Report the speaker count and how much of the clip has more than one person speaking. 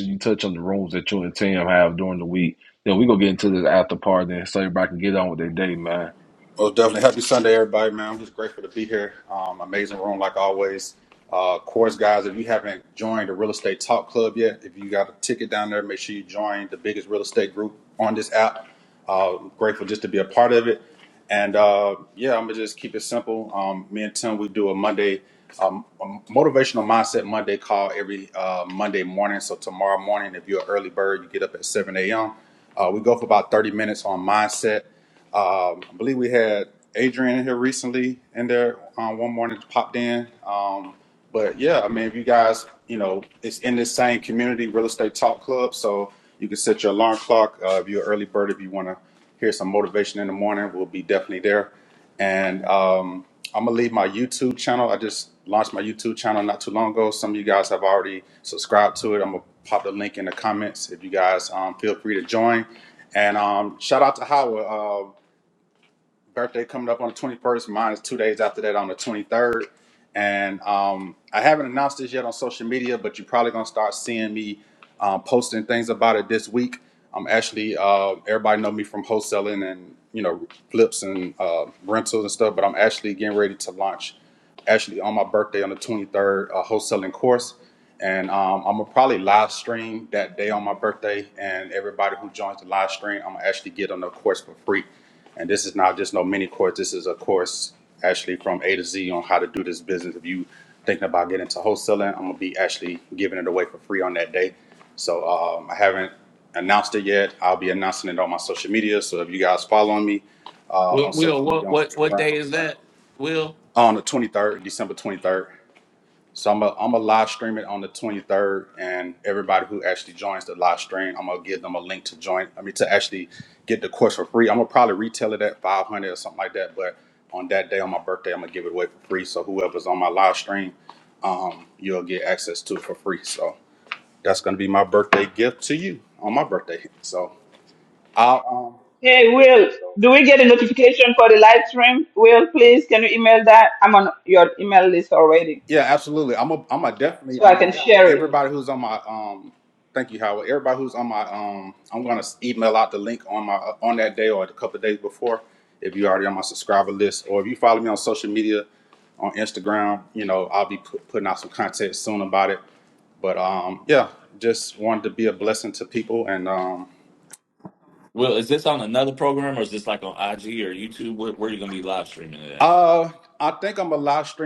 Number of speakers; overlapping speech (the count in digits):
4, about 1%